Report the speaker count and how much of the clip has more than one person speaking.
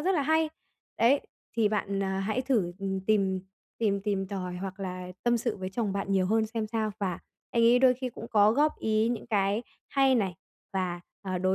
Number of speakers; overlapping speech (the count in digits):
1, no overlap